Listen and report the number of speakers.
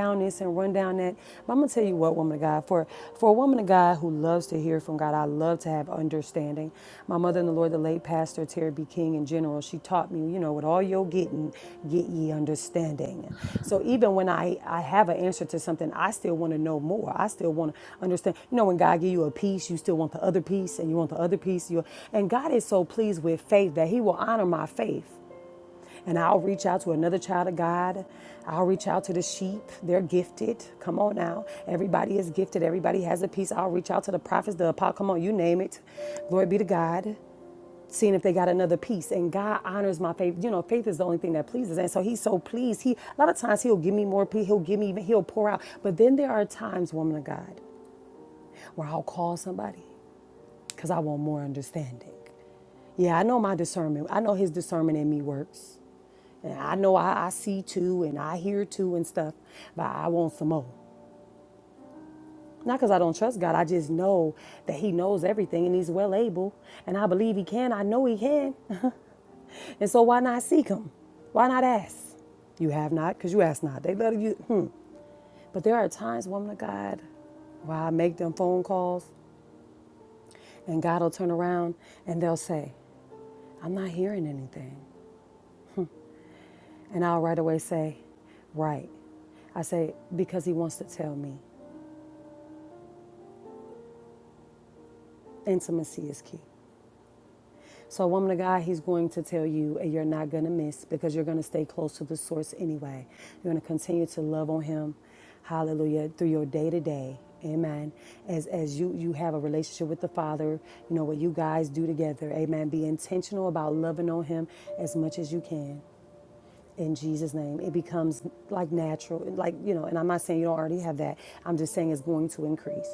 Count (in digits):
1